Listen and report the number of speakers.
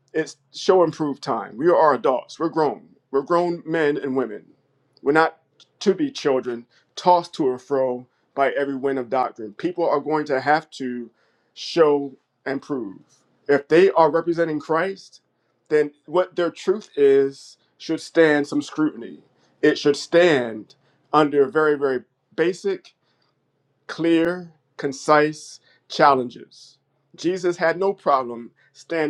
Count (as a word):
one